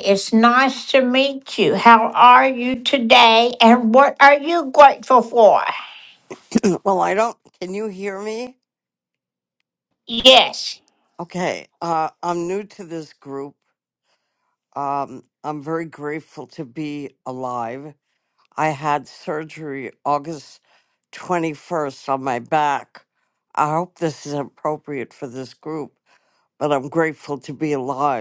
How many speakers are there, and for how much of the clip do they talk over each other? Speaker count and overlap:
two, no overlap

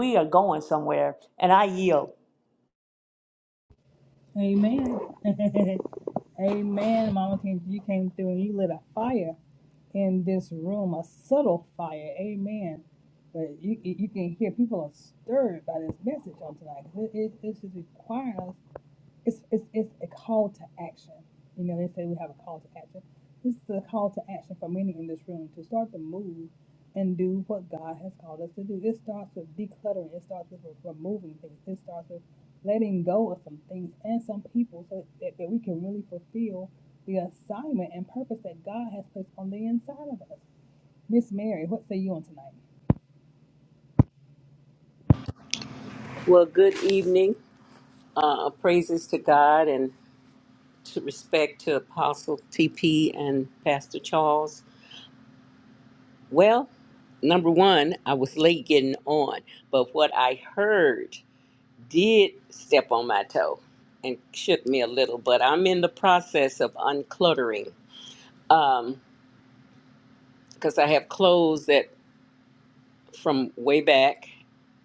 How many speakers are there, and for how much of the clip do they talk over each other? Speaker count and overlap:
three, no overlap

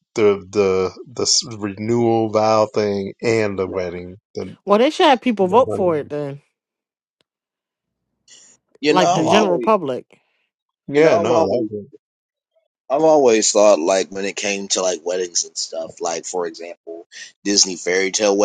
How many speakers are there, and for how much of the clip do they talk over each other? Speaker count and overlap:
three, about 12%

